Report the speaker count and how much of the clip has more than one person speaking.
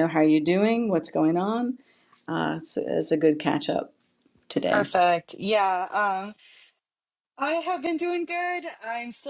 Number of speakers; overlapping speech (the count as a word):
two, about 2%